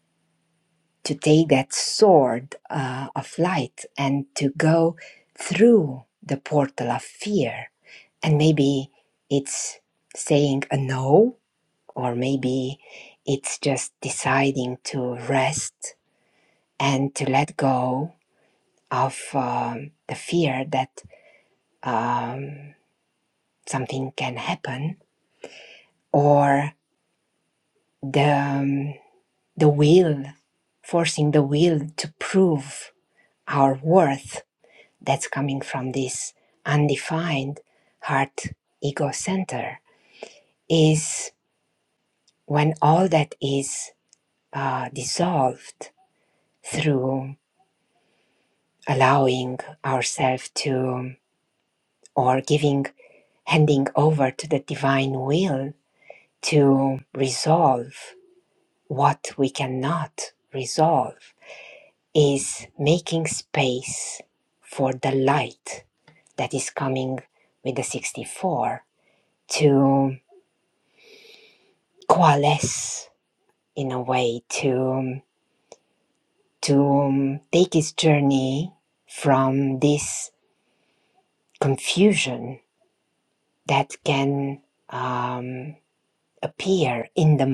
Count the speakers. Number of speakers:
one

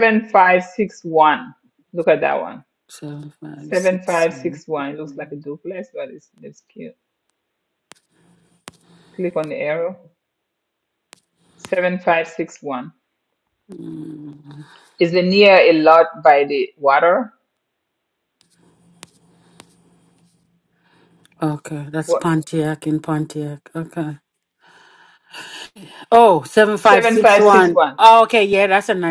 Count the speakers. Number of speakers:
two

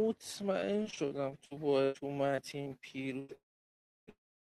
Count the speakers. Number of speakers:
one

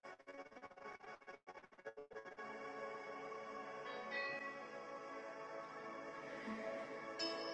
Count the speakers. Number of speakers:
zero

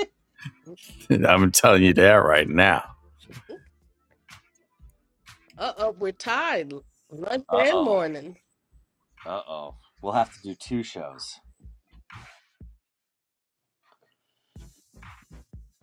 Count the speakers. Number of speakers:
three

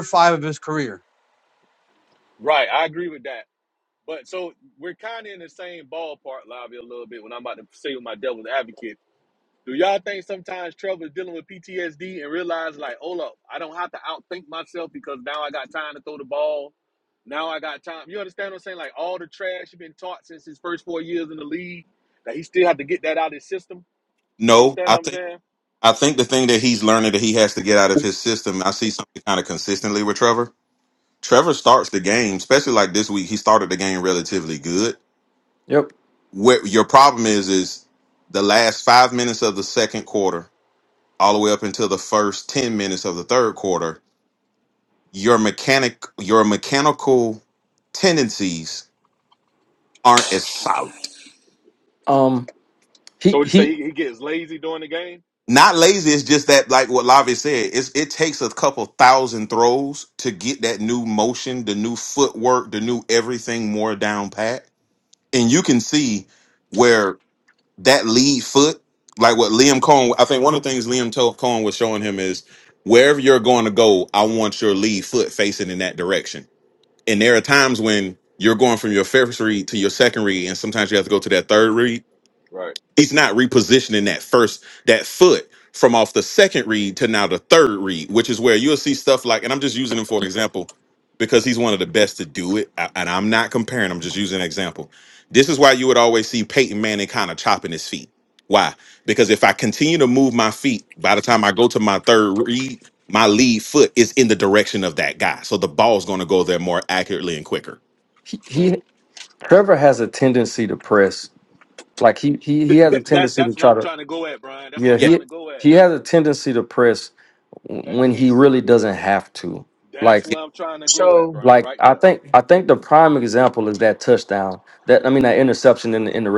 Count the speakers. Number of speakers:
four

